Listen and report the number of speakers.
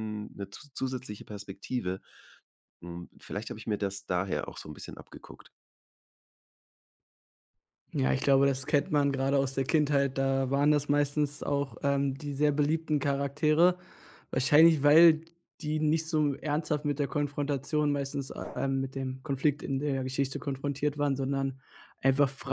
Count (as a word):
two